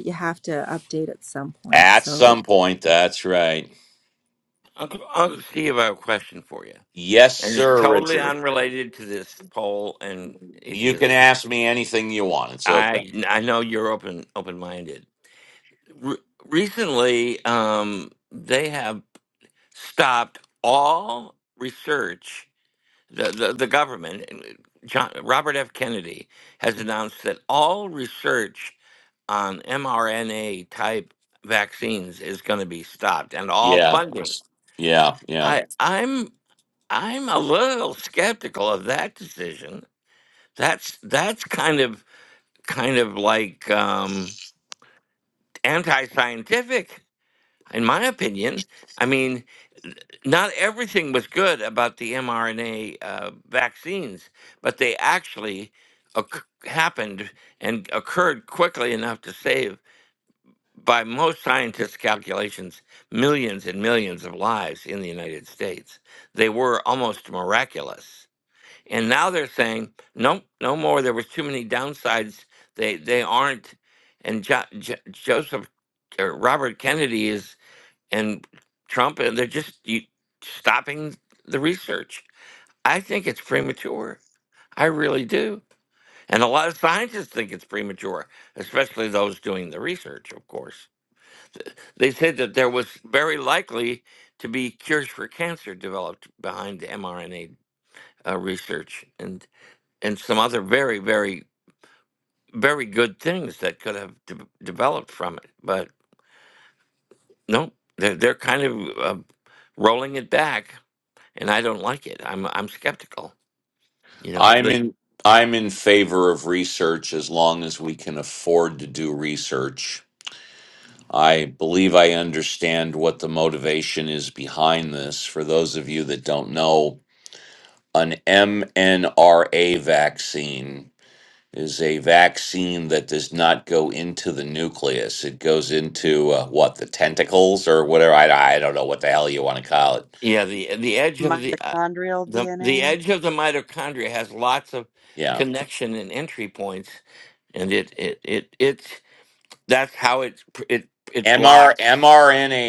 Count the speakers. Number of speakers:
4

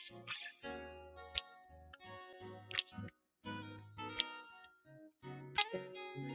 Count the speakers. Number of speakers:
0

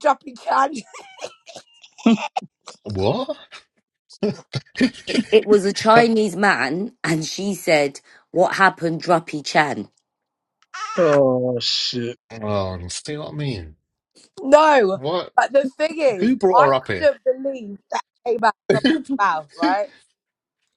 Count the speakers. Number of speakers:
4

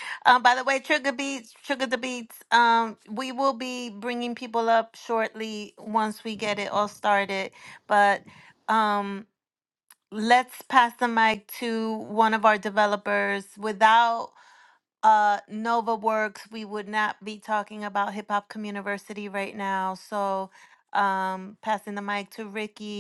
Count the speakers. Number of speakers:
1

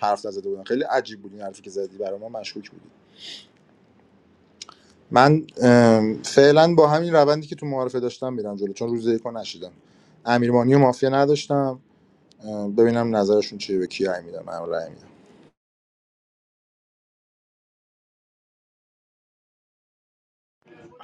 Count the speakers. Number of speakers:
1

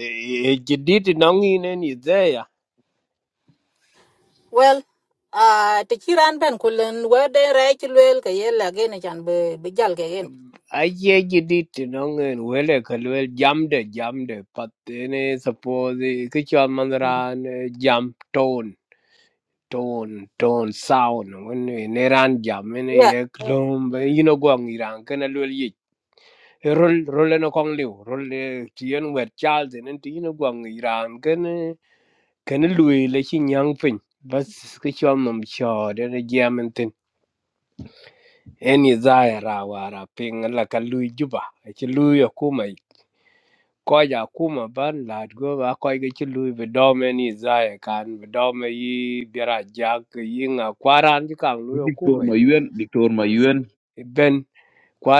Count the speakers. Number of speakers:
3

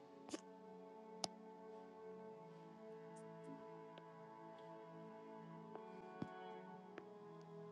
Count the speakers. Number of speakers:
0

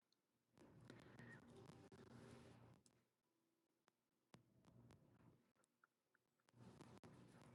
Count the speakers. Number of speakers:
0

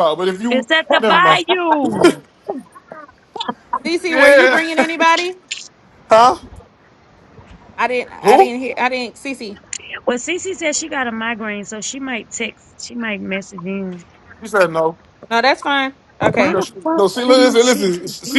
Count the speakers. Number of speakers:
3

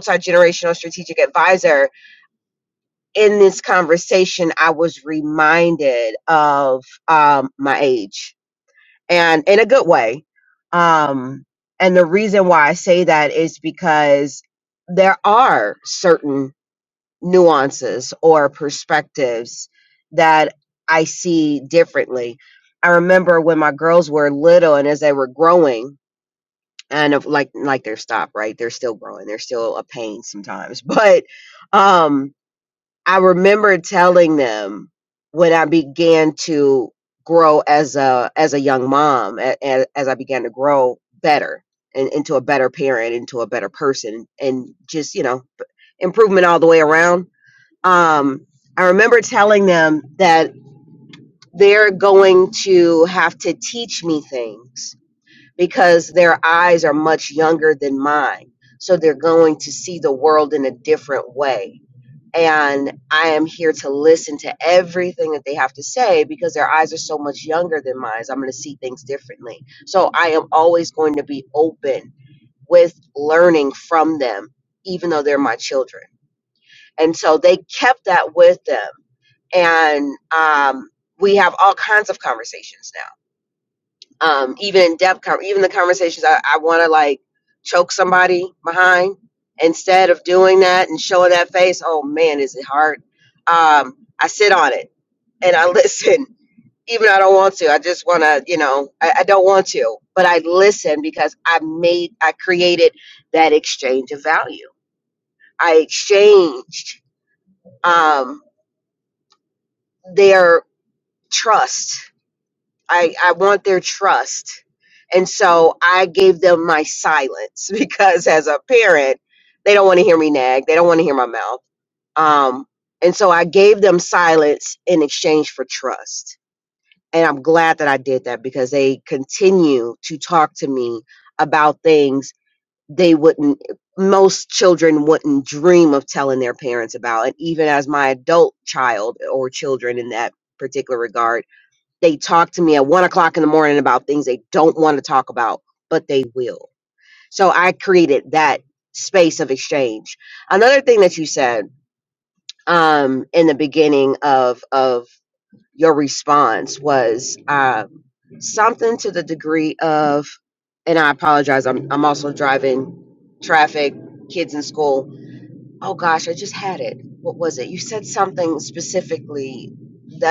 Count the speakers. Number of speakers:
1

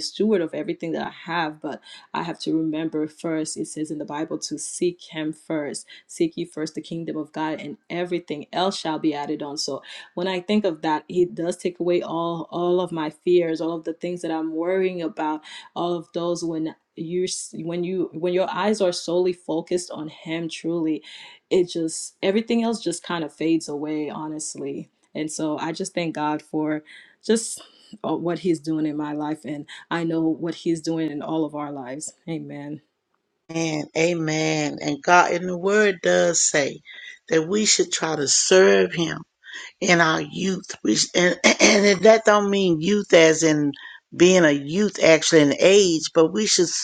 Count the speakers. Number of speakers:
2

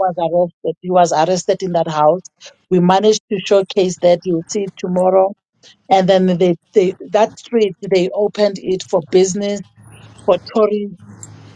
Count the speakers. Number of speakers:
1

